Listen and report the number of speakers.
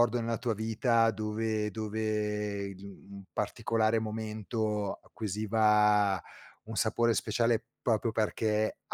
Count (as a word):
one